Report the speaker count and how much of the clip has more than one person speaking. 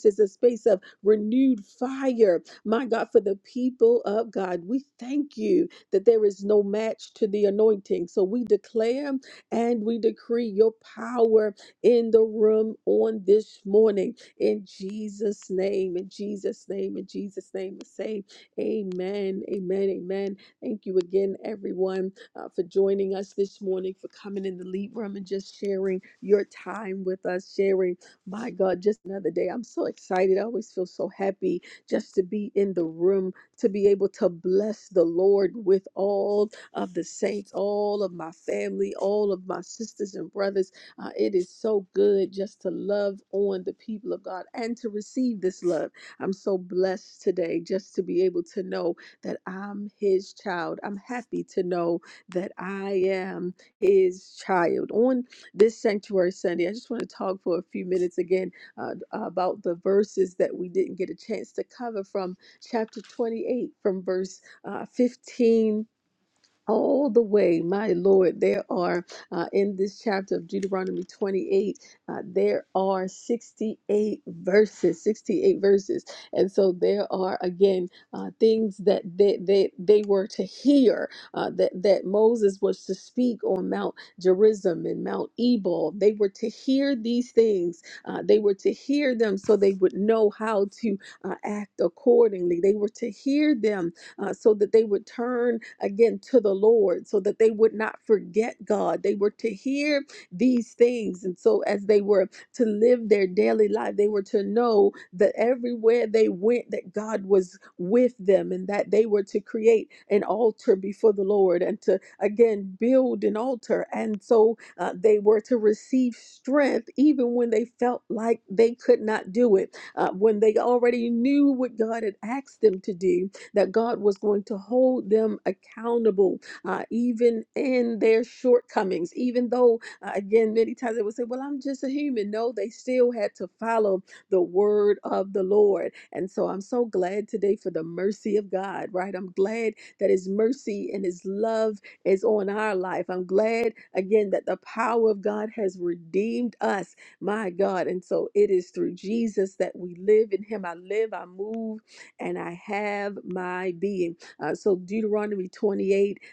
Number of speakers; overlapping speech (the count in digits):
1, no overlap